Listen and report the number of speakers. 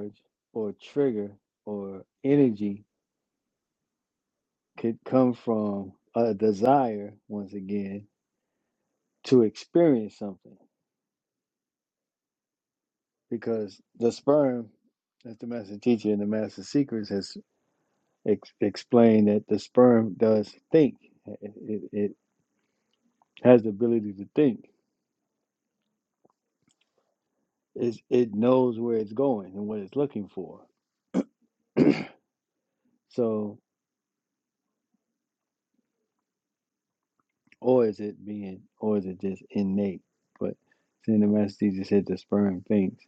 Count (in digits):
1